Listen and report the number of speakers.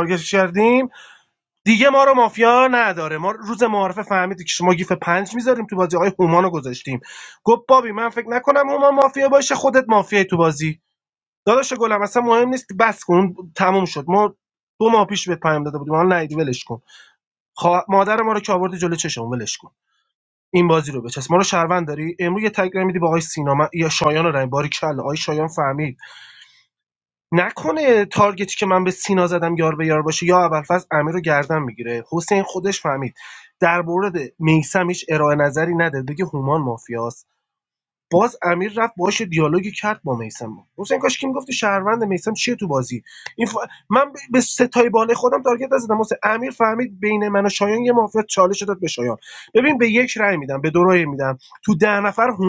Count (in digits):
1